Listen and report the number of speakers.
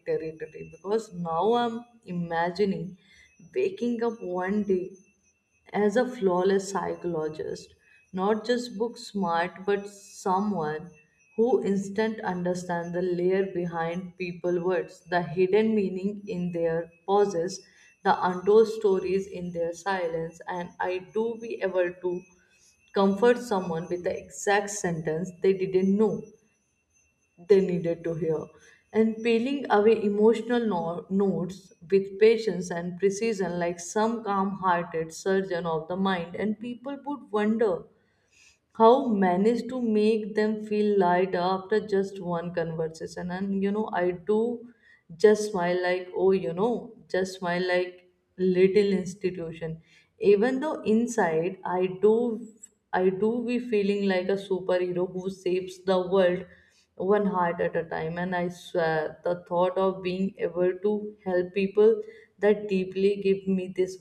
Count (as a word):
one